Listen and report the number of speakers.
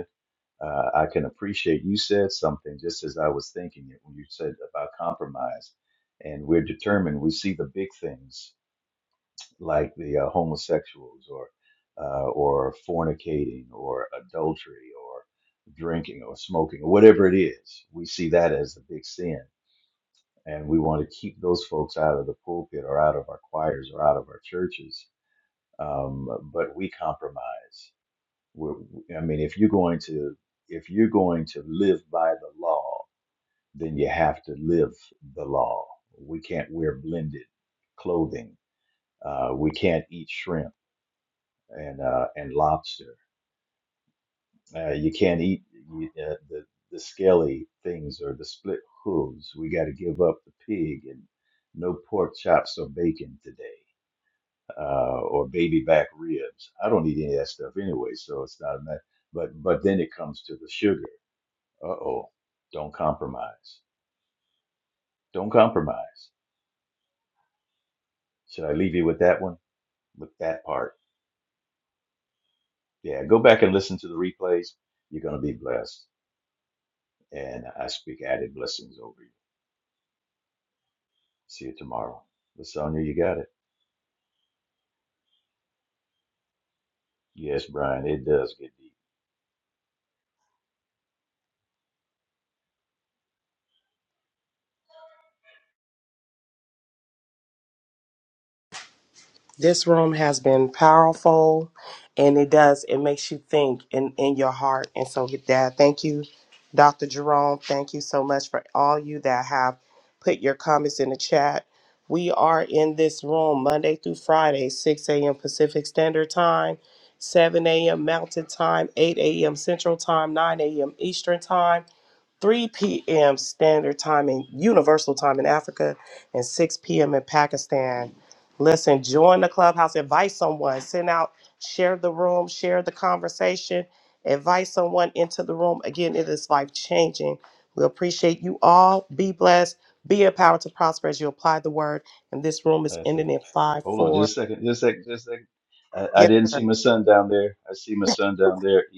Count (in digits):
2